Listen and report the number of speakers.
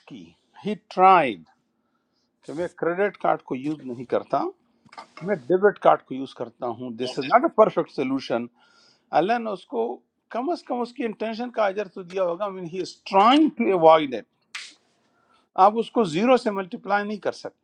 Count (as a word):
one